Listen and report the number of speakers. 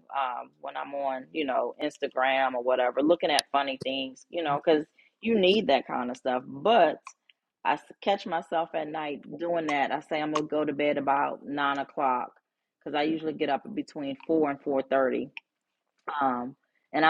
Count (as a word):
one